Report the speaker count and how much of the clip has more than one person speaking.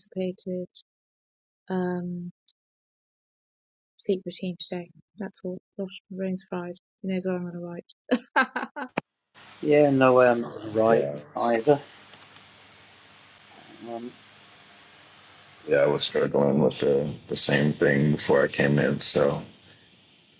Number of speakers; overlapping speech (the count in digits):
3, about 3%